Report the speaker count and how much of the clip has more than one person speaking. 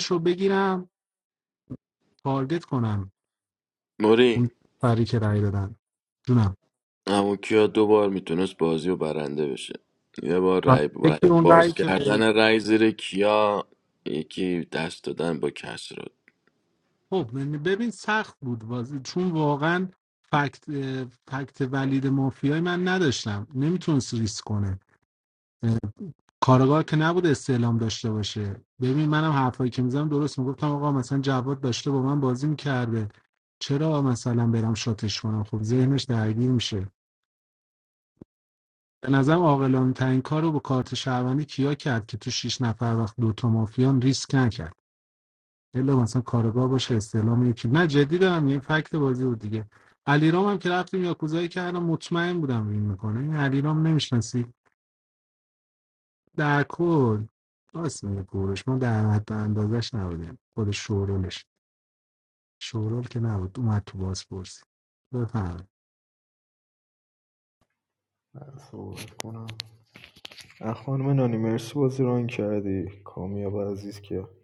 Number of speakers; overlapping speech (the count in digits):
3, about 2%